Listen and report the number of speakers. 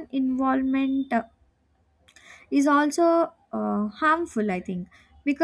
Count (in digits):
1